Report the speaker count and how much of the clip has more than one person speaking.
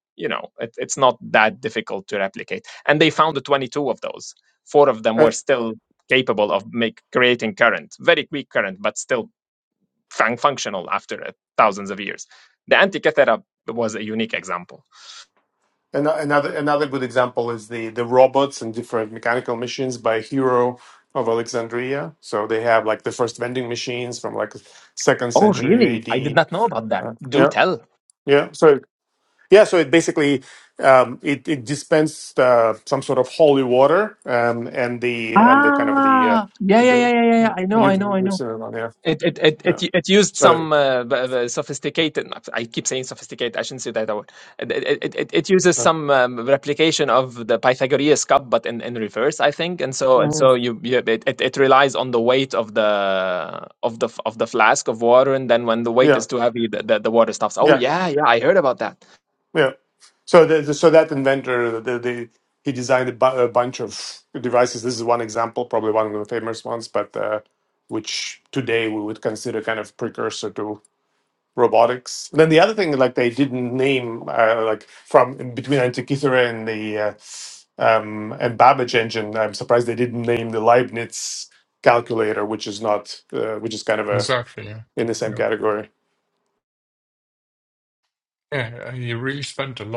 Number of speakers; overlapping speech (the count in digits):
3, about 6%